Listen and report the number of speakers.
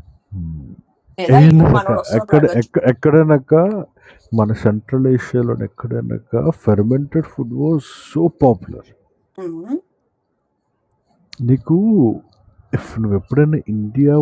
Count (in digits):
2